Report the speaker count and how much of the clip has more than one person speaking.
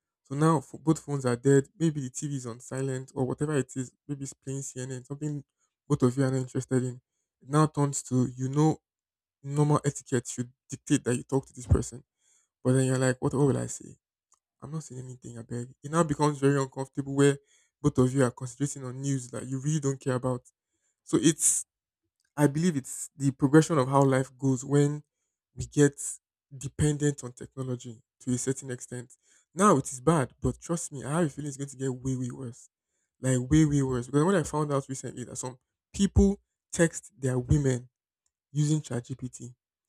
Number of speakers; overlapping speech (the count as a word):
one, no overlap